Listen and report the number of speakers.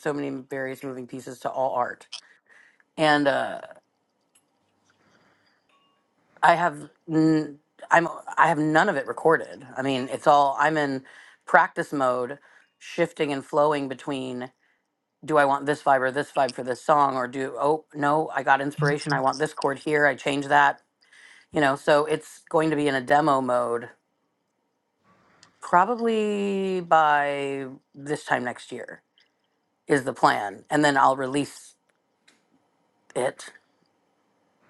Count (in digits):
1